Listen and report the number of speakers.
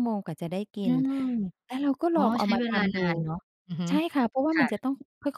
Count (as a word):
two